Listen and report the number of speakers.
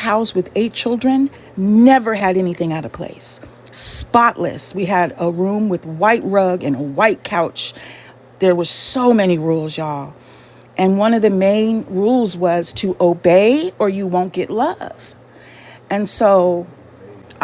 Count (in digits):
1